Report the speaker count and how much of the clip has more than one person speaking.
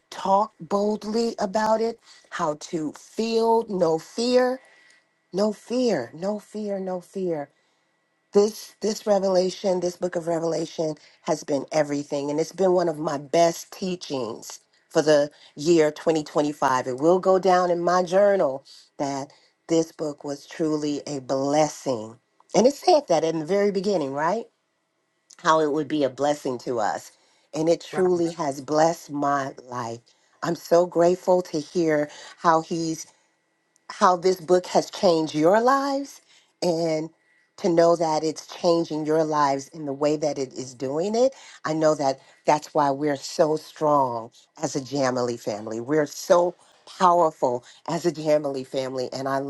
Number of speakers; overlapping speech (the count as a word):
one, no overlap